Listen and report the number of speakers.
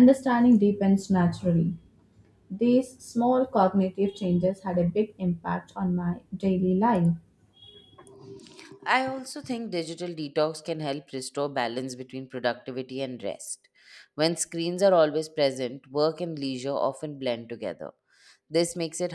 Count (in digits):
2